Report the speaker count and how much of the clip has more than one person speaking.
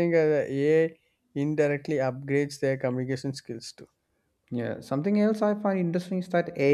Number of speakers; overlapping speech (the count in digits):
2, no overlap